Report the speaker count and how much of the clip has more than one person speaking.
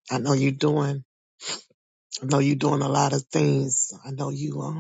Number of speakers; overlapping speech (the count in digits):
1, no overlap